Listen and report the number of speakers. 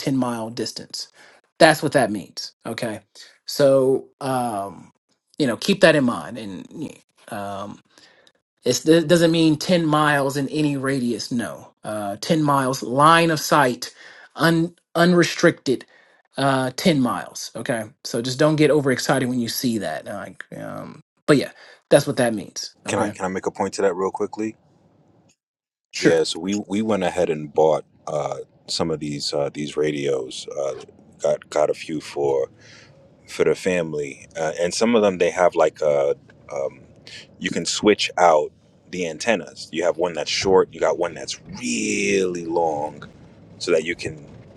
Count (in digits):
2